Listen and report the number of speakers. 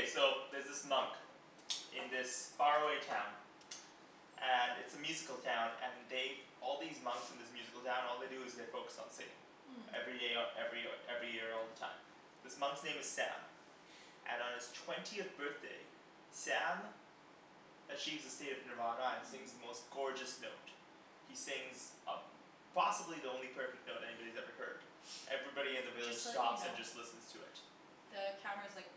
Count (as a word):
two